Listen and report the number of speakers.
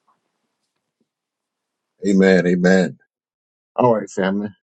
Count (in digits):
1